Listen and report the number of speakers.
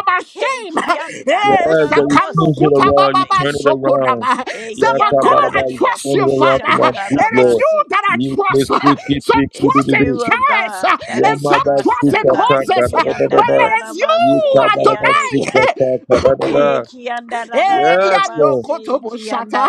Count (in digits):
3